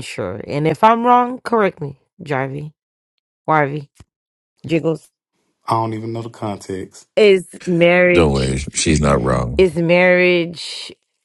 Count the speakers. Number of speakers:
three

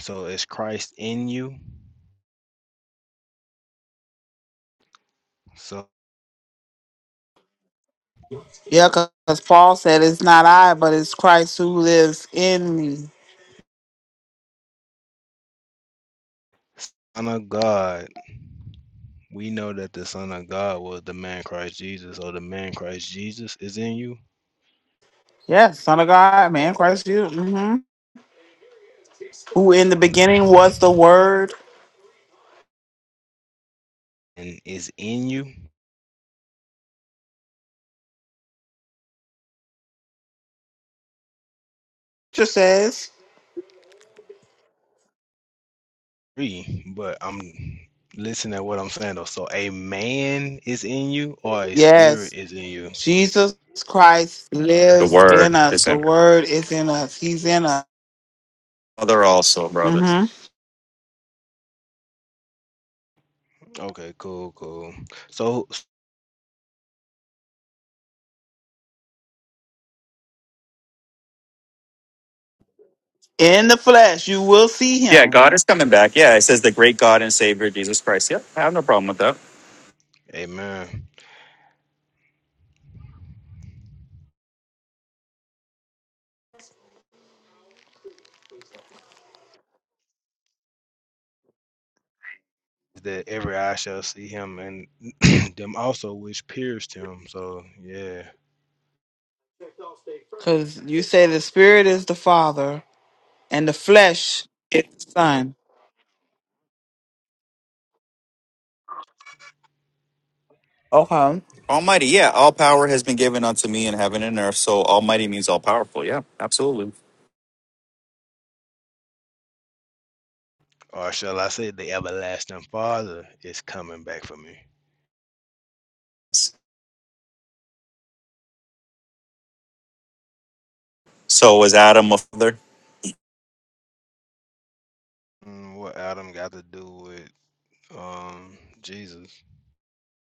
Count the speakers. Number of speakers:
three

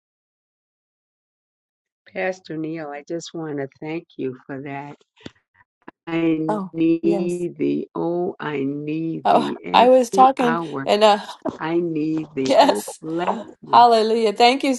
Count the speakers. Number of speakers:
two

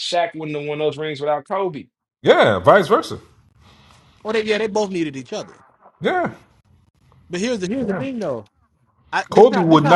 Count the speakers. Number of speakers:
three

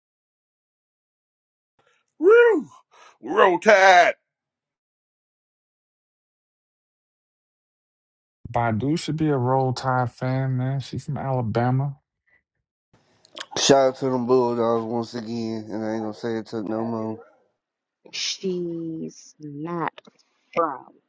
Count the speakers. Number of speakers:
four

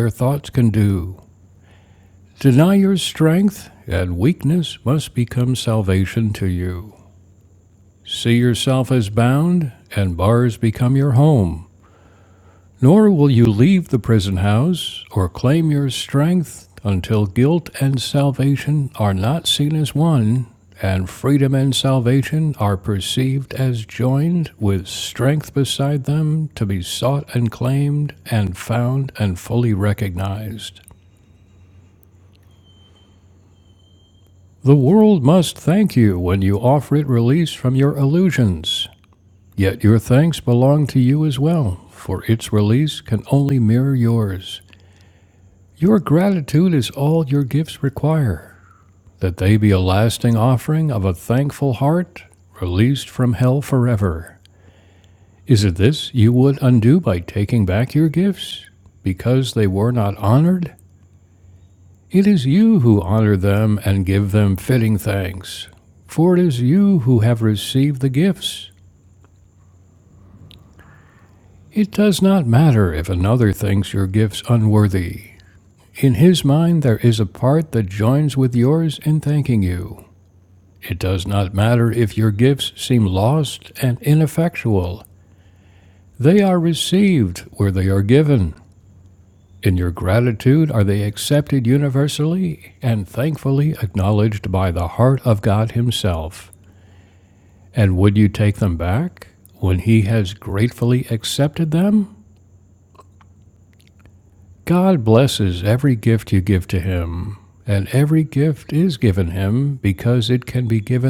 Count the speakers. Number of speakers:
one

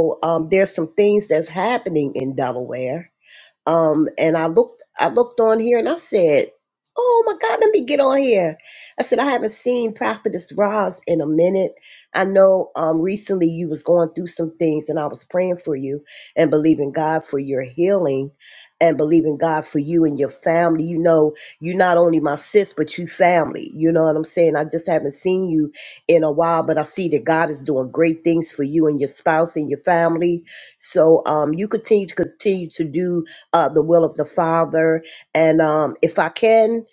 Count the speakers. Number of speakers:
one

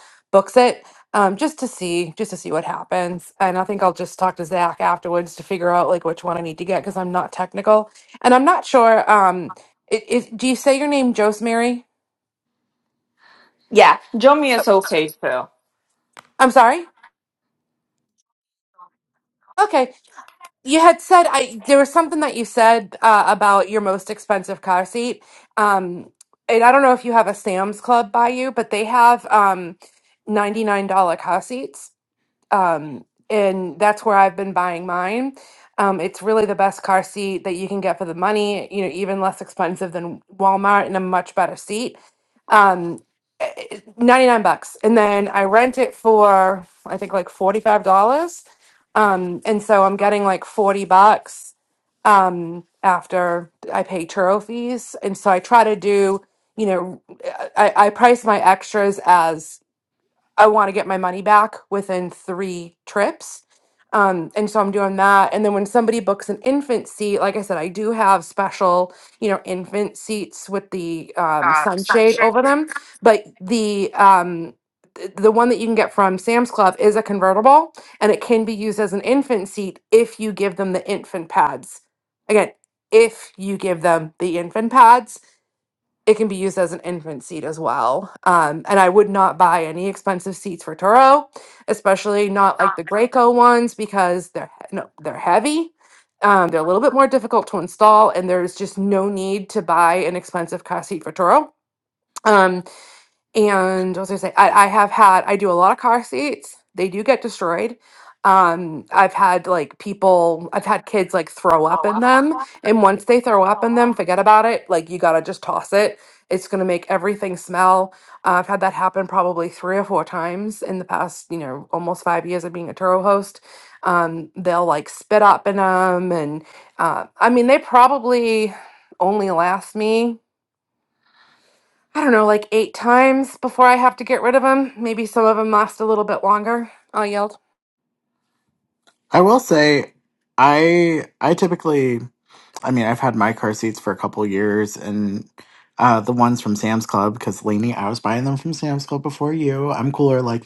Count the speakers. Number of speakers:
three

